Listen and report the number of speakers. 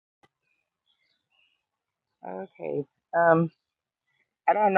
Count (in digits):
1